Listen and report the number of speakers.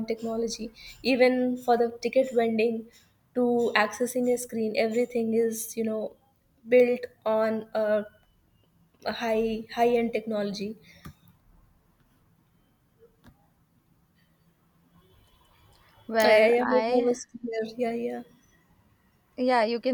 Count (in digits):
2